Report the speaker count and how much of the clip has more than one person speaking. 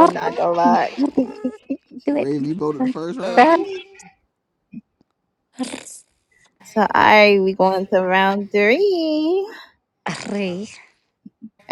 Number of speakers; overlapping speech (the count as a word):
three, about 5%